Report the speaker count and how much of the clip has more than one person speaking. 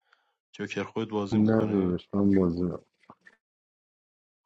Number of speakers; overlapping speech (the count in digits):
2, about 14%